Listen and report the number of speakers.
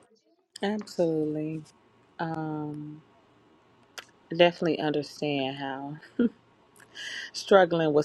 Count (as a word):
one